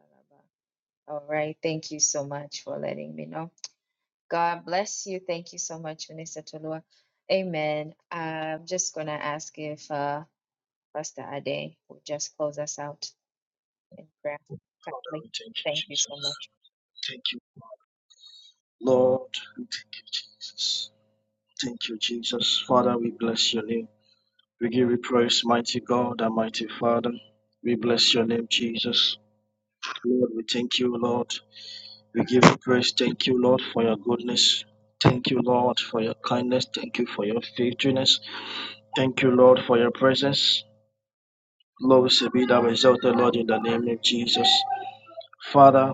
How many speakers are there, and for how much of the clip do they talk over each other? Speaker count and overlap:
two, about 2%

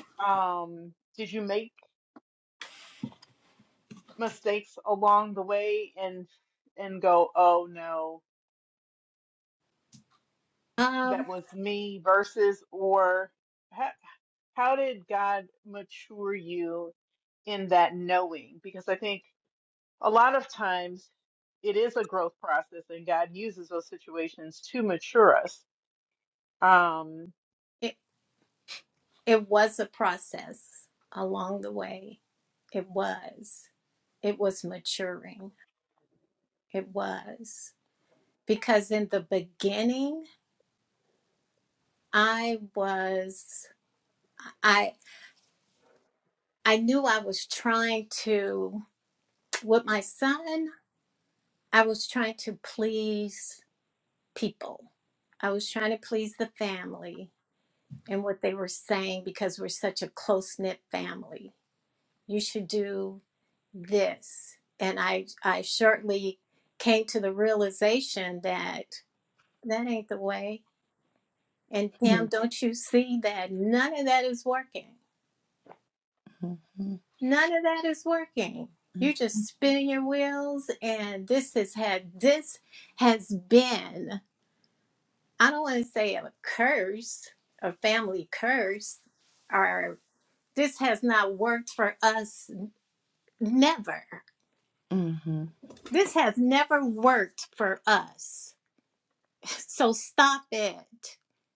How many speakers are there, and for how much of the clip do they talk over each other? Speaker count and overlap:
three, about 1%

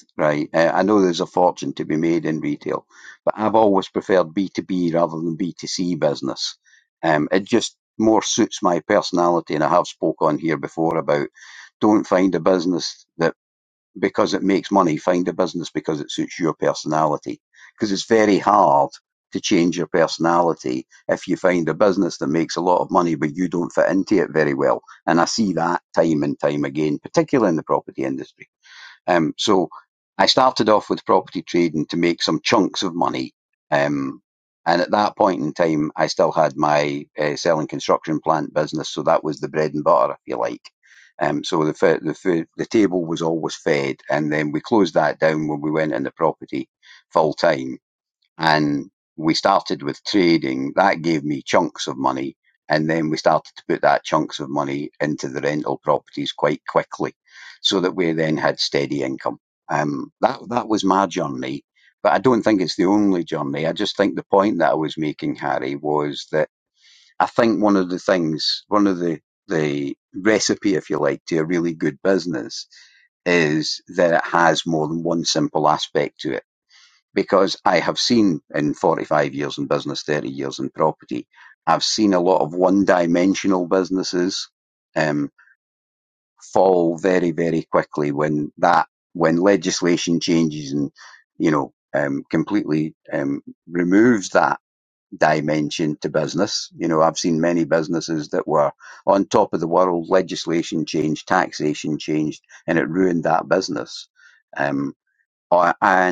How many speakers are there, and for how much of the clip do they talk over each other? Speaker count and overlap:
one, no overlap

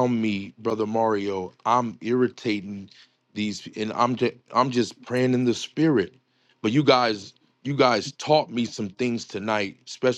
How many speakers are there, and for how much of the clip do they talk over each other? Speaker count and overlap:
one, no overlap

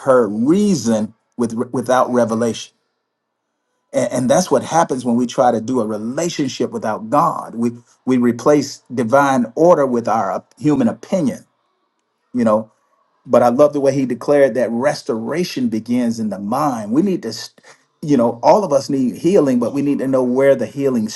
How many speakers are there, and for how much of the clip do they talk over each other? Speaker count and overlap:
one, no overlap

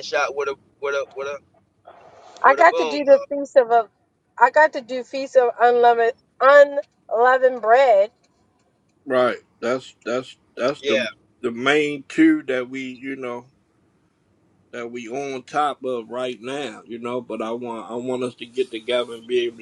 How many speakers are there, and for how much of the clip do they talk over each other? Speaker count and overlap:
three, about 5%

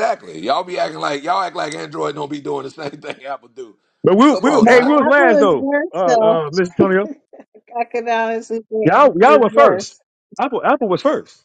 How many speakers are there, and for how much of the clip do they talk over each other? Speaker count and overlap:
three, about 27%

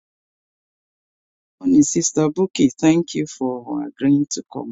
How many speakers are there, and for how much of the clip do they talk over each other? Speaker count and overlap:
one, no overlap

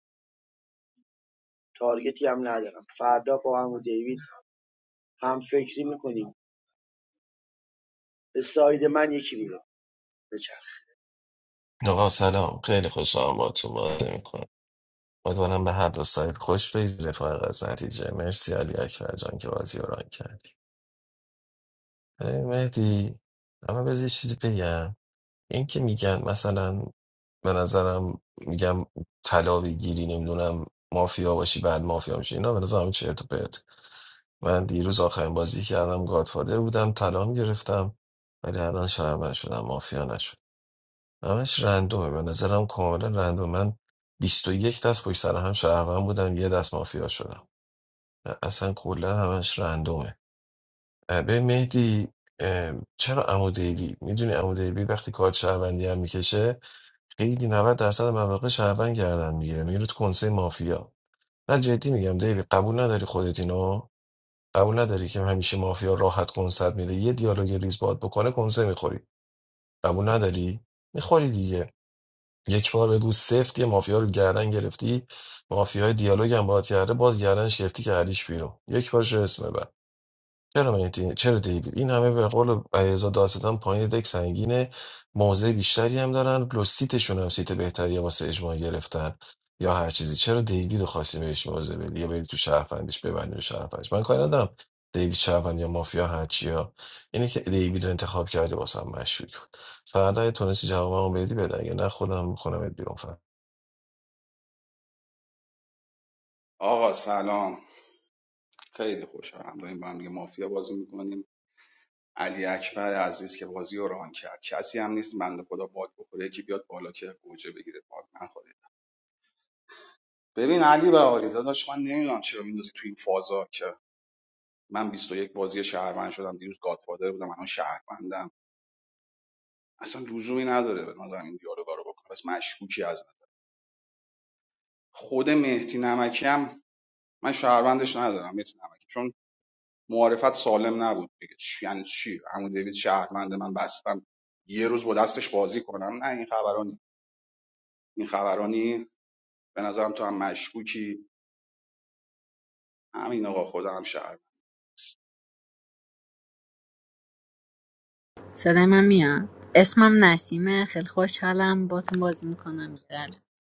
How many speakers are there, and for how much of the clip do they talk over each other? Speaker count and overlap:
four, no overlap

